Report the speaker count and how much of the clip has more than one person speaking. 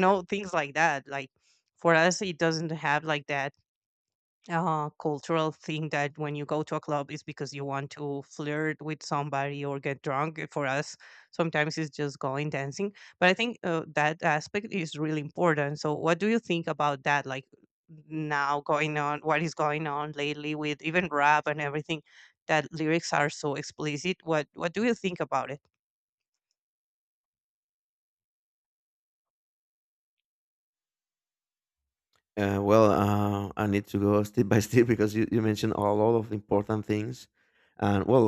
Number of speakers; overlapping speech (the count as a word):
two, no overlap